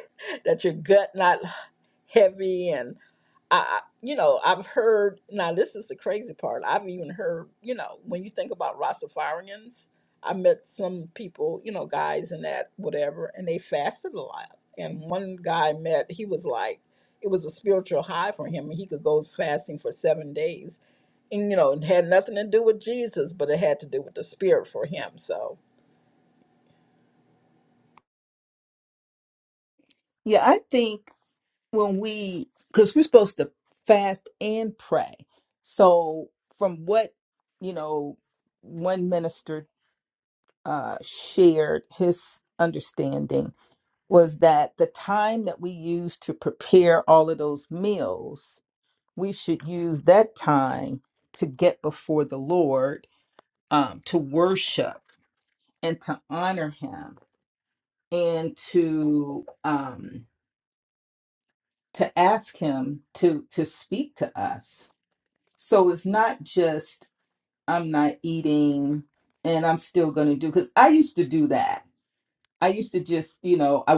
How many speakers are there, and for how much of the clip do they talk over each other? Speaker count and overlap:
2, no overlap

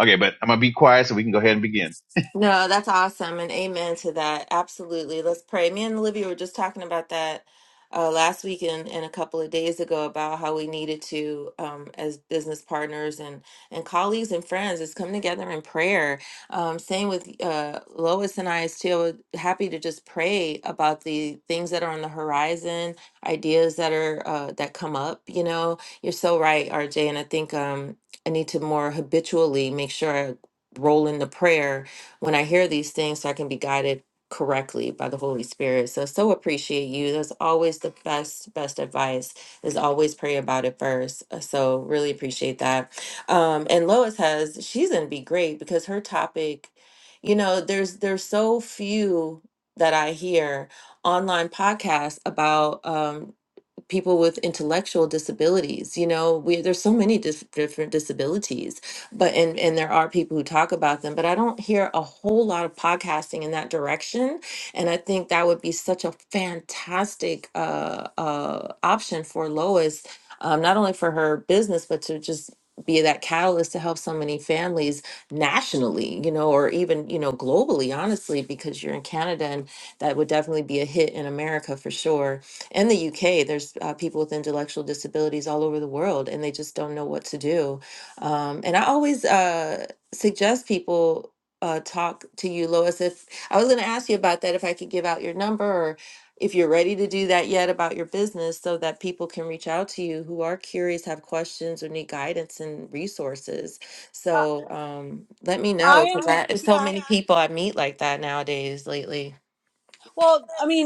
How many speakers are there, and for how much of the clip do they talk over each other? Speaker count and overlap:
3, about 1%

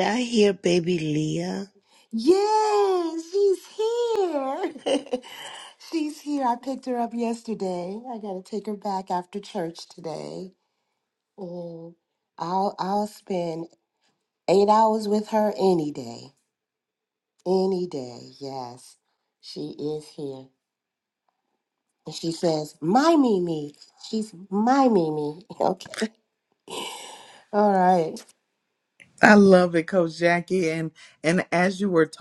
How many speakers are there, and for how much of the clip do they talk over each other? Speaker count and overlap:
3, no overlap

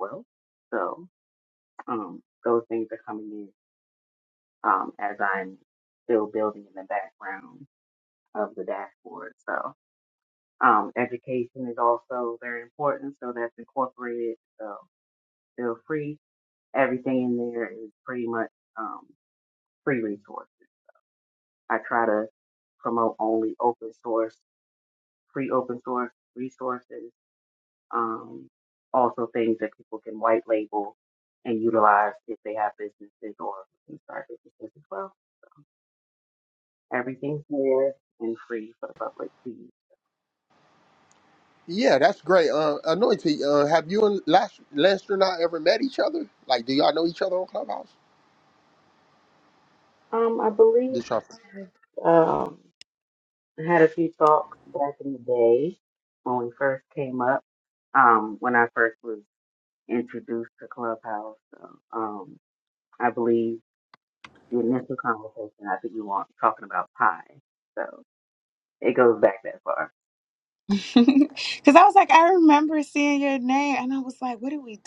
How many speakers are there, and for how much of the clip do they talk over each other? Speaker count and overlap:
3, under 1%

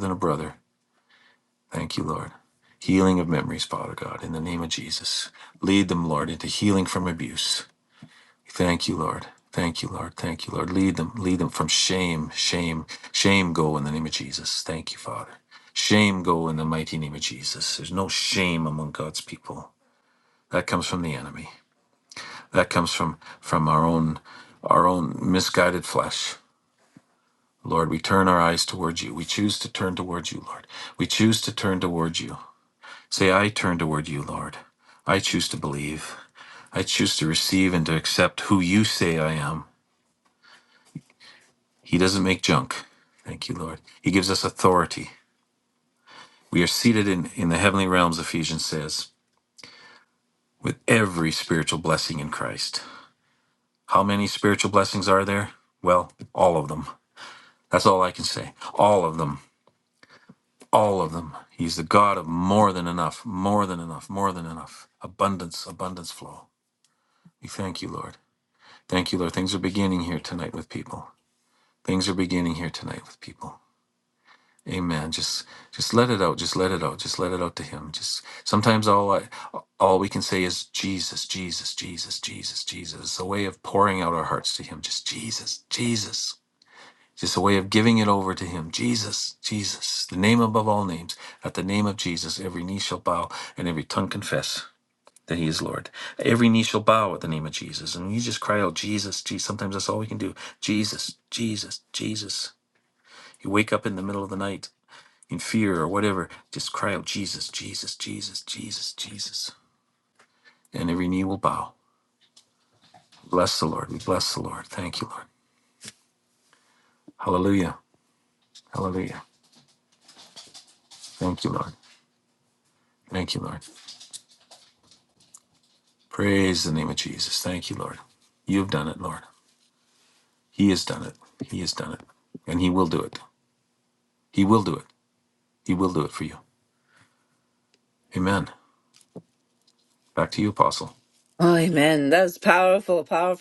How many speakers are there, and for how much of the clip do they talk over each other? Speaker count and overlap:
2, no overlap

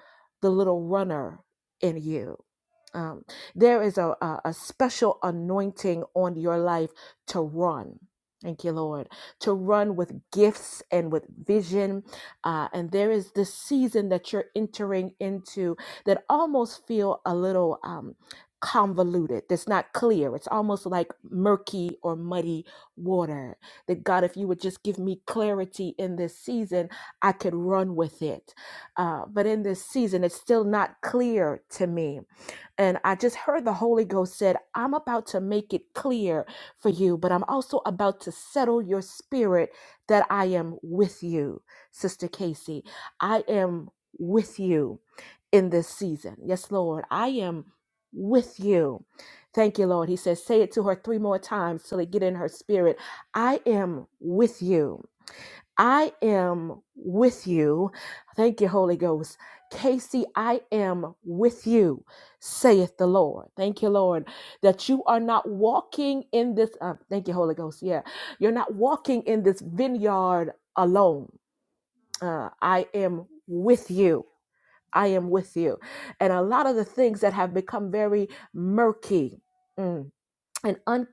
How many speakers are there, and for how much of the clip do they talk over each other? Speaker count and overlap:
1, no overlap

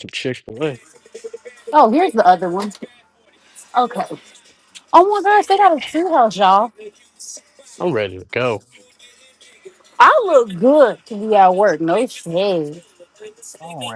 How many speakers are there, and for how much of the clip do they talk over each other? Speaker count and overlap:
2, no overlap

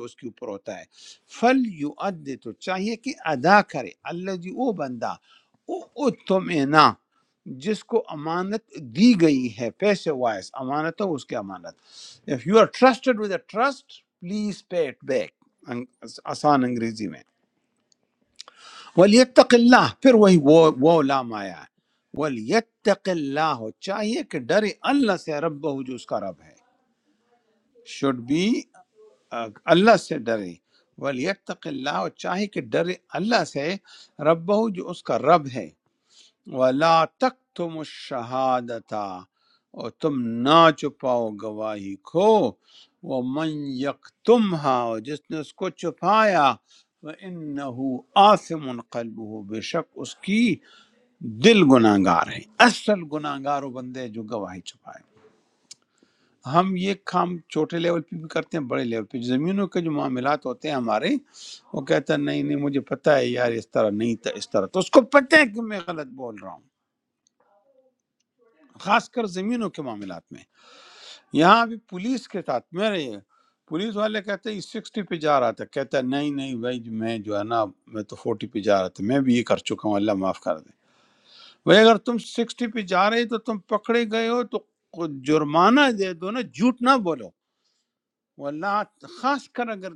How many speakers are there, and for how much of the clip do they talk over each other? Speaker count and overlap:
1, no overlap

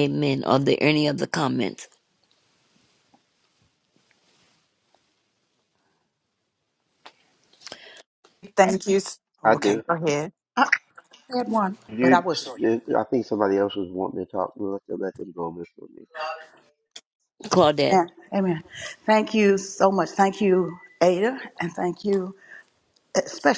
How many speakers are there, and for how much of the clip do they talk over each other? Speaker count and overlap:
4, about 3%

